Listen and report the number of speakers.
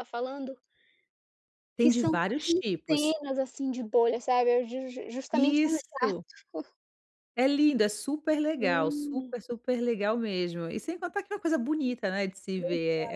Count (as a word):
two